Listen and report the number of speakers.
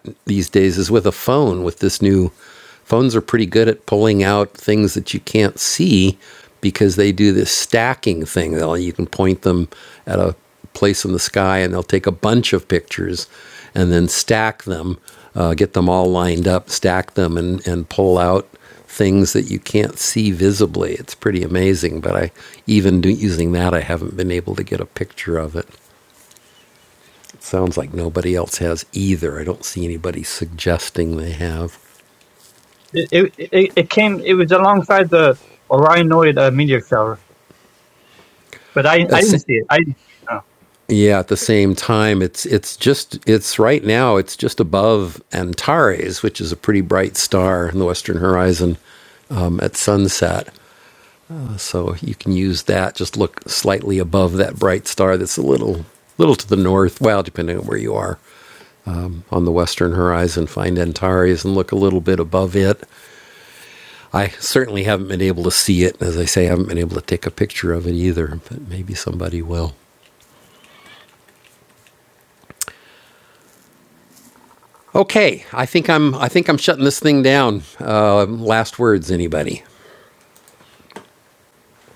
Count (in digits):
2